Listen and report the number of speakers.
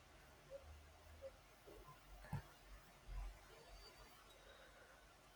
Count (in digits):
0